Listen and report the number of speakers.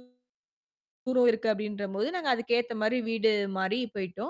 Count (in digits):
1